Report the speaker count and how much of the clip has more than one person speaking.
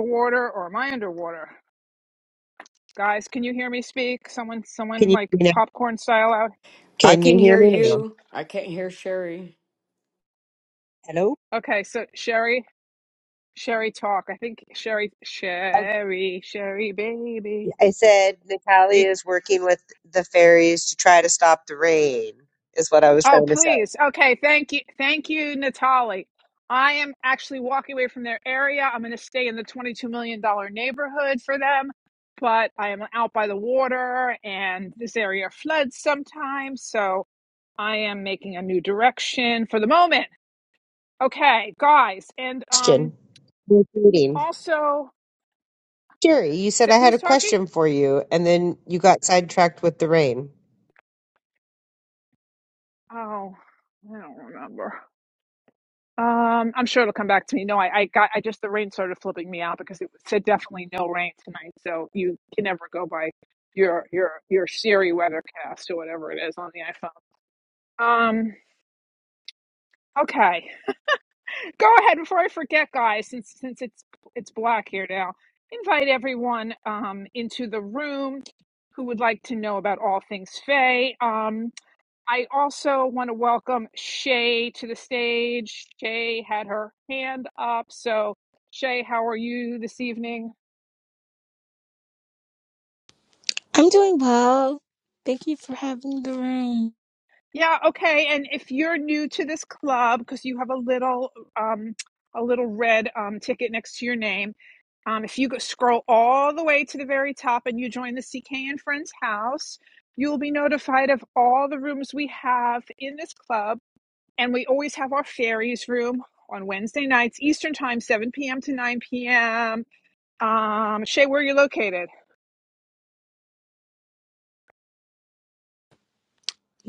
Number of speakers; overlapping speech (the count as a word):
four, about 3%